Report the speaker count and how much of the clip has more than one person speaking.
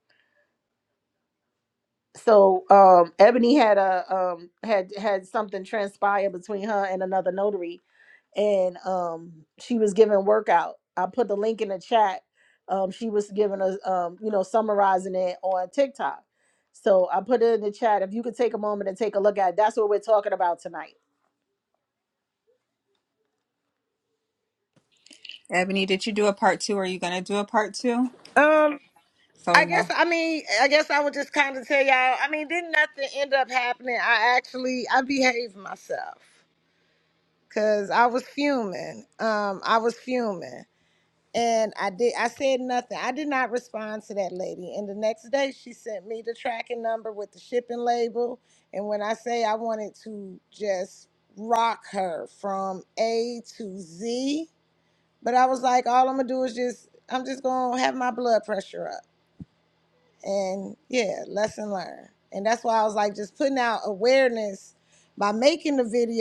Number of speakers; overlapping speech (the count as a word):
three, about 1%